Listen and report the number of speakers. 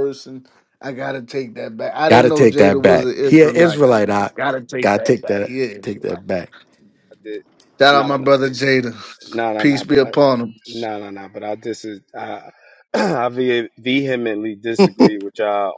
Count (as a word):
three